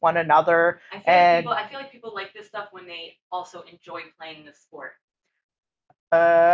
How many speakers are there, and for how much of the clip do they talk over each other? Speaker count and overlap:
two, about 10%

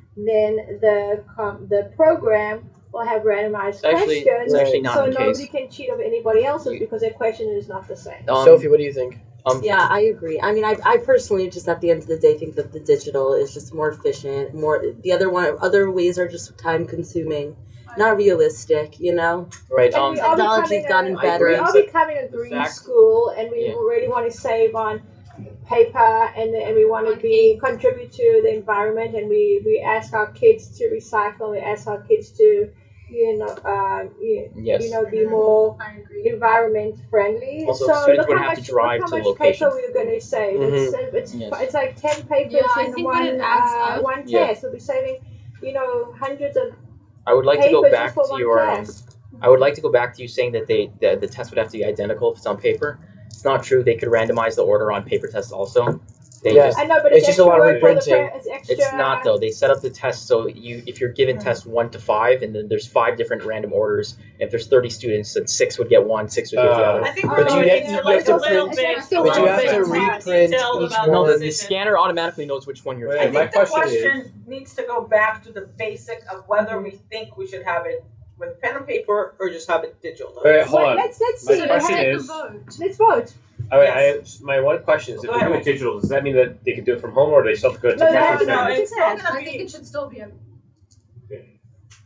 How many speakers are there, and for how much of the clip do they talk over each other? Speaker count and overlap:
seven, about 29%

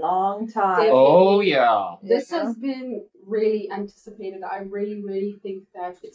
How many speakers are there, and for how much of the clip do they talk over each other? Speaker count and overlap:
three, about 25%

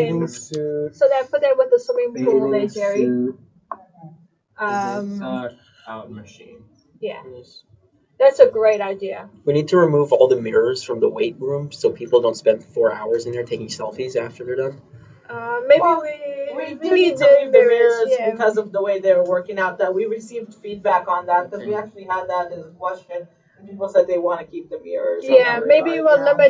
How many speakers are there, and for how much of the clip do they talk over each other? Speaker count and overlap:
four, about 20%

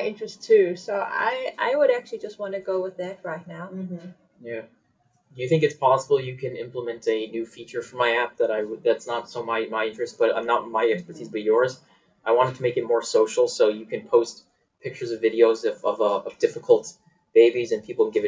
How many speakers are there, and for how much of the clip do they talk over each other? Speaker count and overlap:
two, no overlap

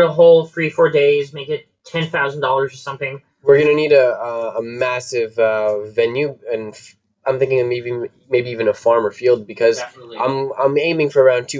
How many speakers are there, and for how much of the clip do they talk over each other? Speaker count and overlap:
two, about 2%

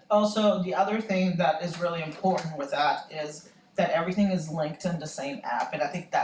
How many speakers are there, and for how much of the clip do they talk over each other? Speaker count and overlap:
one, no overlap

